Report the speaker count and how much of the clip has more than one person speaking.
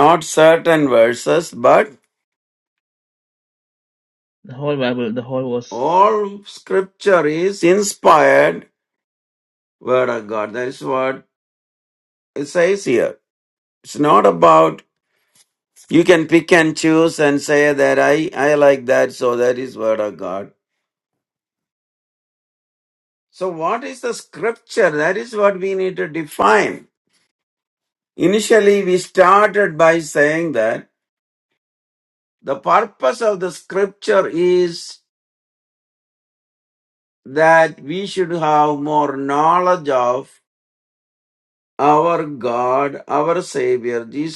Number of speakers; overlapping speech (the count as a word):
two, no overlap